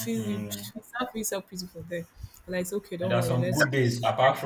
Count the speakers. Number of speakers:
two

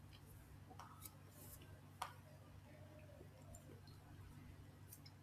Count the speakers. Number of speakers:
zero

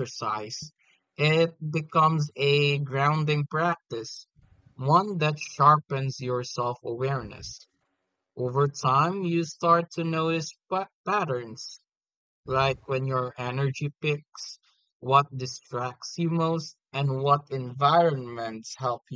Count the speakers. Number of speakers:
one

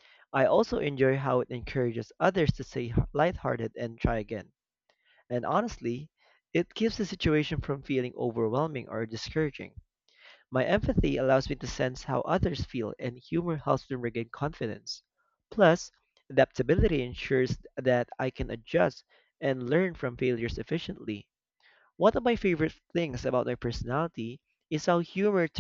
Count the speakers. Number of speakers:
one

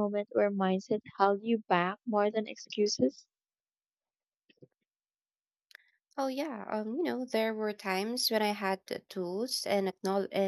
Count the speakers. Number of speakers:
two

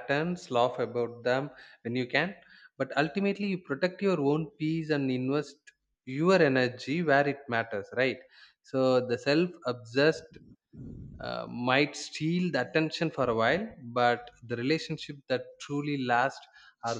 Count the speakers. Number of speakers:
one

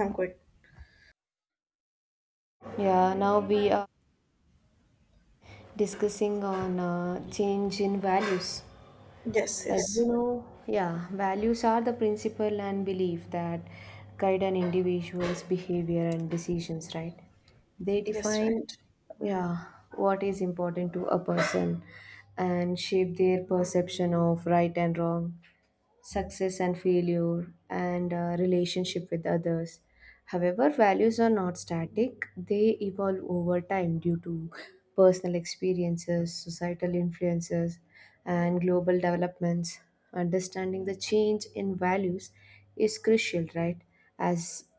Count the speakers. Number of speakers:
two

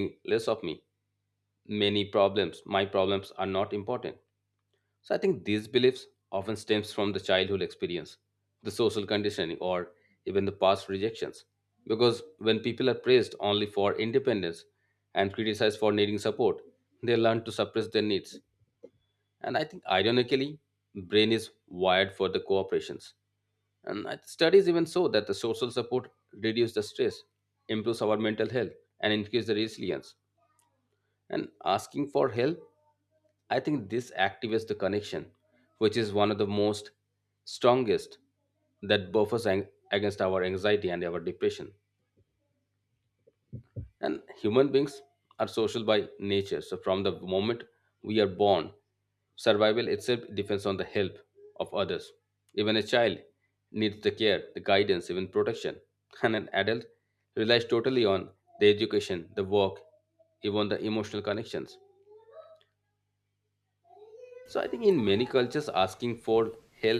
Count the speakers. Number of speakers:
one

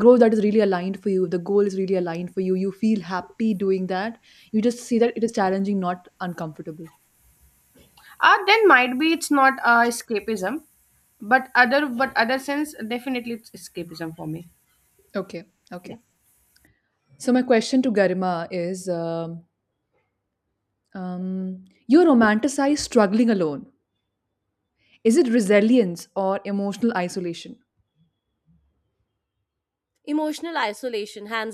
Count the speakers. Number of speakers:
three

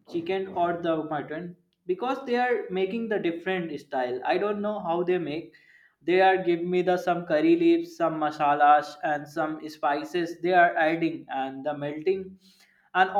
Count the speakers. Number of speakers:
one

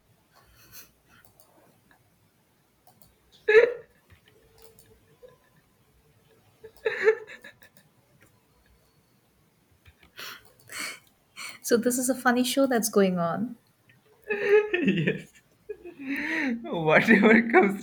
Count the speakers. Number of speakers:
two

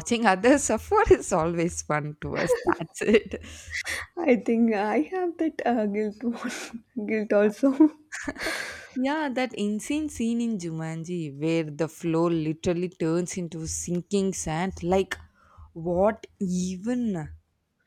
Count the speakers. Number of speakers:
two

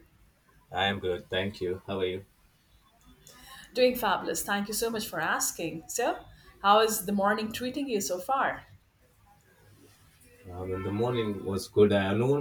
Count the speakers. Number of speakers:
two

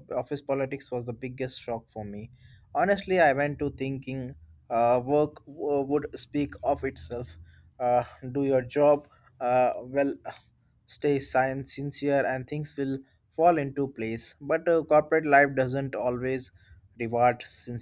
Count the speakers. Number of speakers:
one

